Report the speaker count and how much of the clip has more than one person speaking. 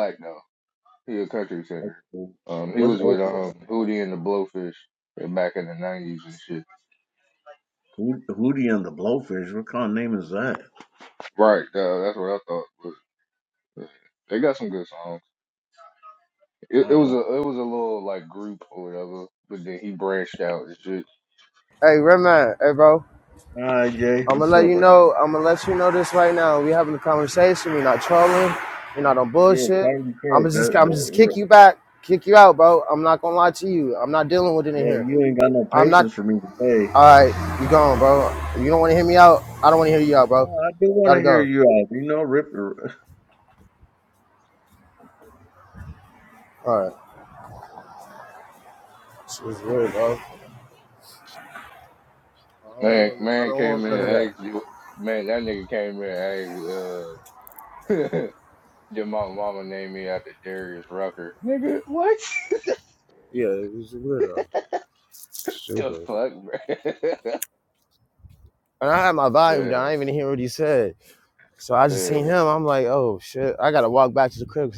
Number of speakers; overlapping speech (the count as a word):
three, about 10%